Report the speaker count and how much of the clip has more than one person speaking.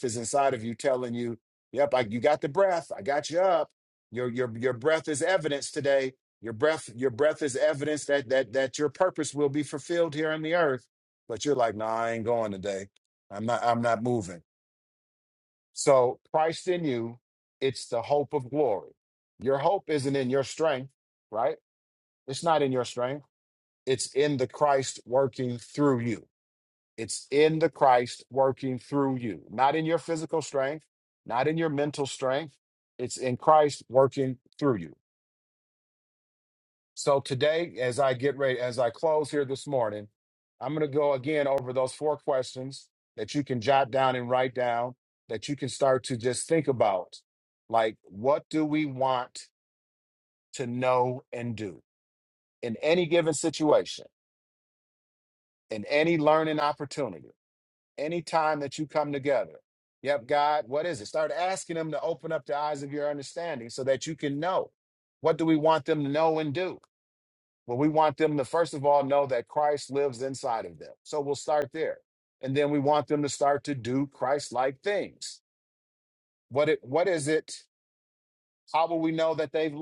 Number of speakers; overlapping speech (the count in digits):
1, no overlap